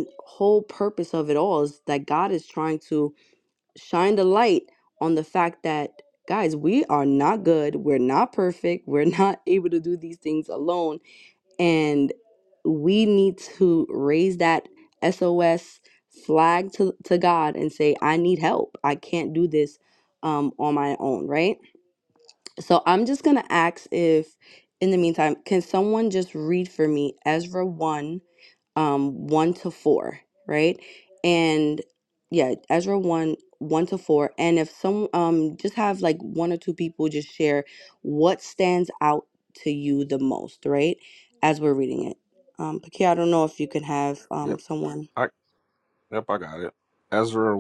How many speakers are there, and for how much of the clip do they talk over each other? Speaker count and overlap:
2, under 1%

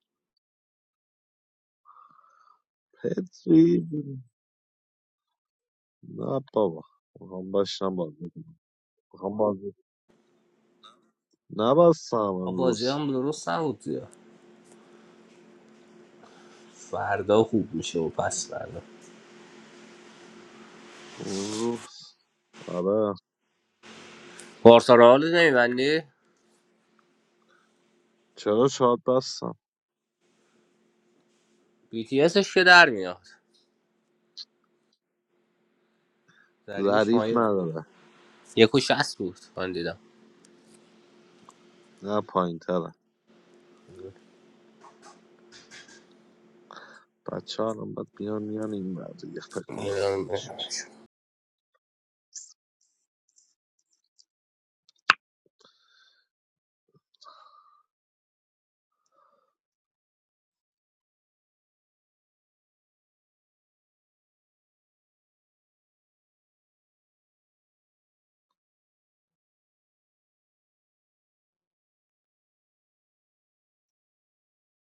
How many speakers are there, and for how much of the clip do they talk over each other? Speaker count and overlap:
2, about 1%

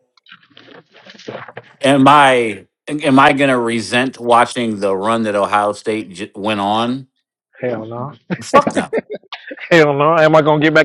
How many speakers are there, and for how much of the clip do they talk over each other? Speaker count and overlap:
2, no overlap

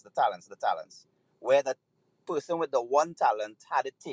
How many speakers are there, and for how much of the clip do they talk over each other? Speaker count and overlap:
1, no overlap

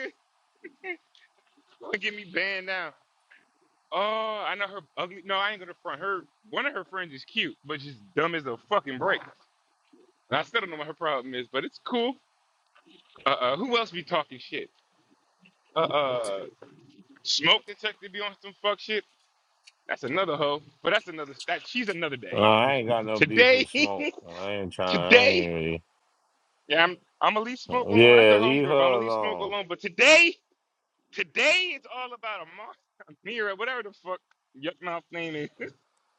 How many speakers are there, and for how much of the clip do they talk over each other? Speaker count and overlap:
2, about 8%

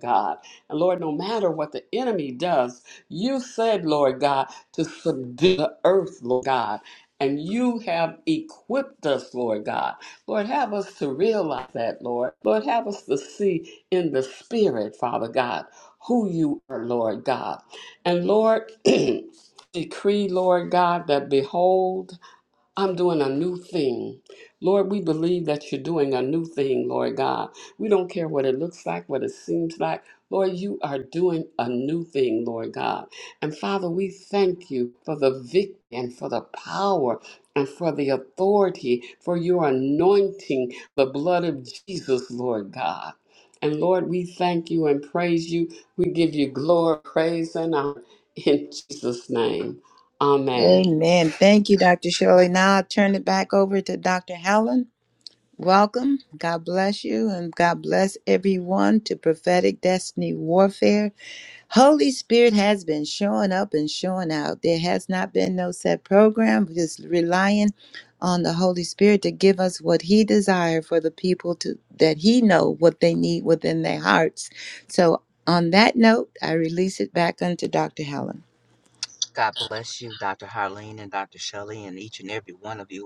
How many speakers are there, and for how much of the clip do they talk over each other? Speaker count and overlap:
3, under 1%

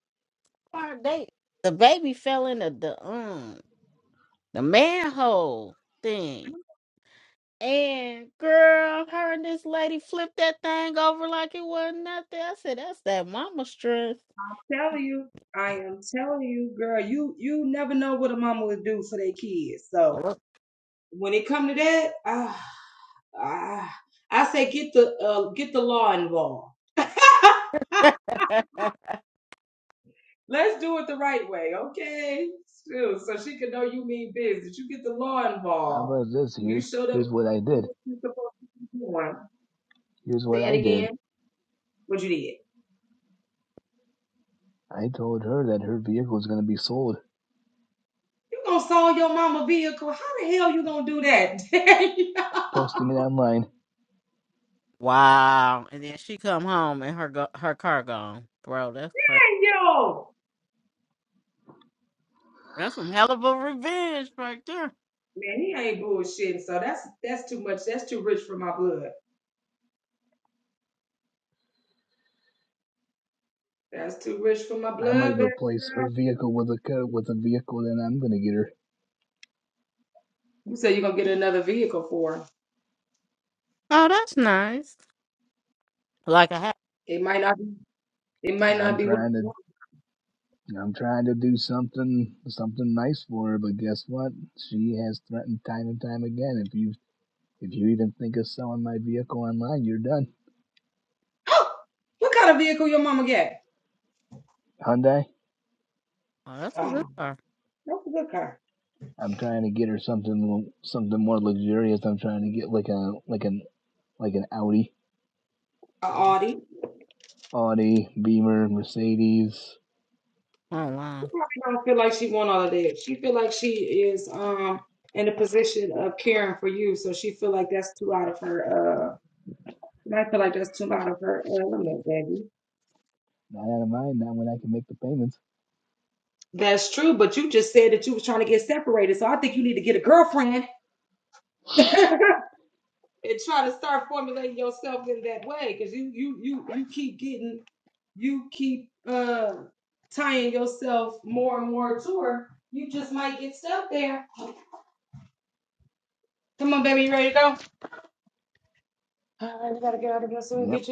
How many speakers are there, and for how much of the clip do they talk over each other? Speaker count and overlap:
3, about 2%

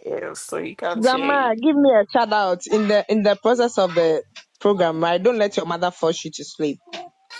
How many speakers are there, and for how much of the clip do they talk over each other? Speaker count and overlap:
2, about 8%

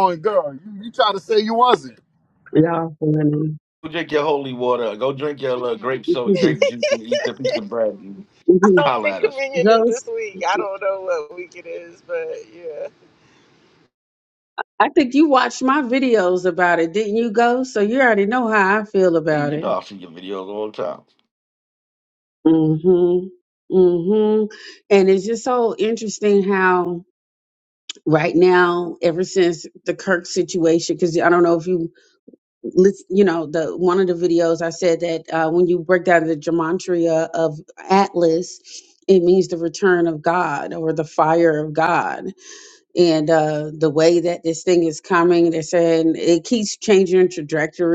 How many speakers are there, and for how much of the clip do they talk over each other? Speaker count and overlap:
4, about 4%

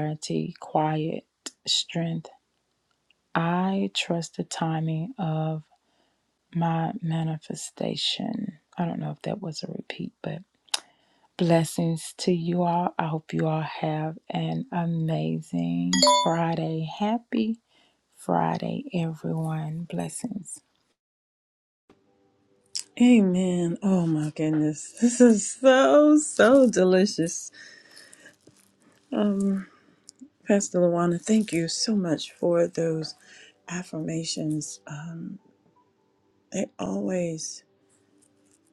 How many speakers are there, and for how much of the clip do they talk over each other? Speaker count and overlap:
2, no overlap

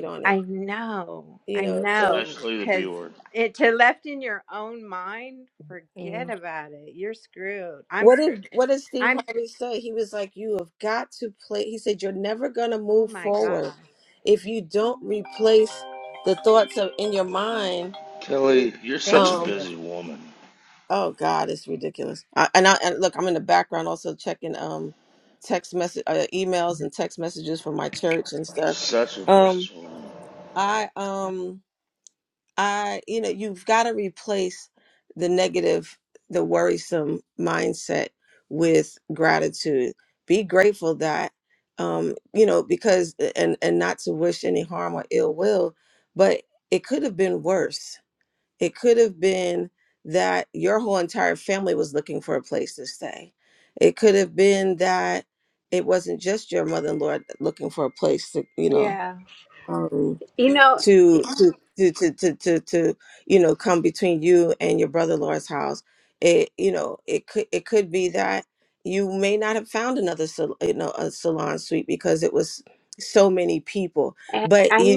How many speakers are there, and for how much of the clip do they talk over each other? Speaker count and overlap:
3, about 7%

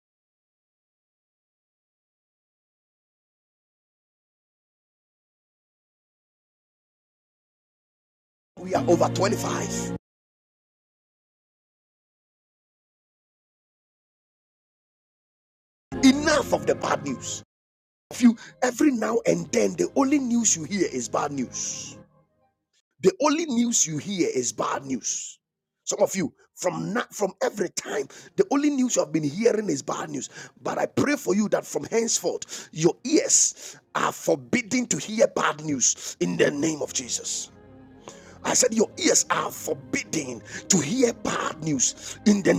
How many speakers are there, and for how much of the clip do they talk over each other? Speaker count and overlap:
1, no overlap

